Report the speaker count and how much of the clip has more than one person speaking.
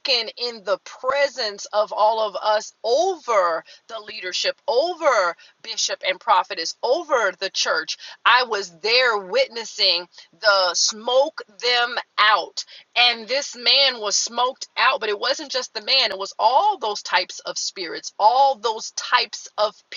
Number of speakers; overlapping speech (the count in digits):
1, no overlap